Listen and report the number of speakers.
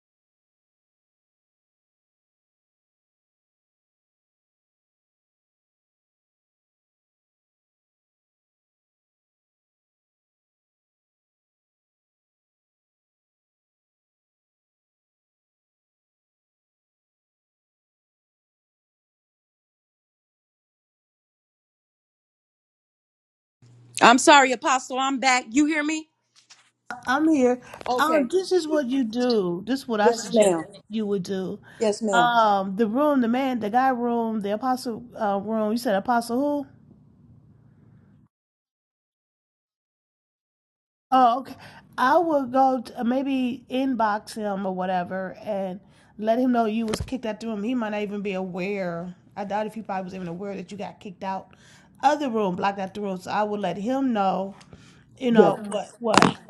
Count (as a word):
two